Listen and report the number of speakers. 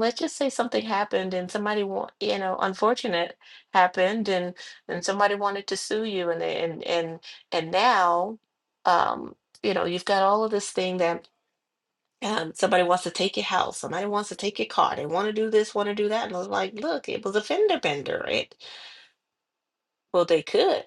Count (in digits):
1